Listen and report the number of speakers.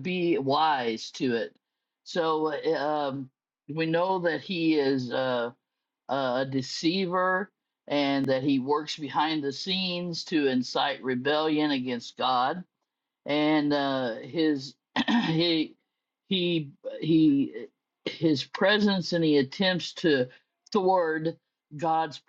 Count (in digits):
1